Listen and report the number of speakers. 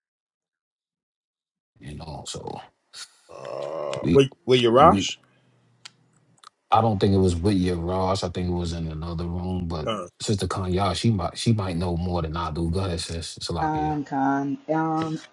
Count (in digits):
3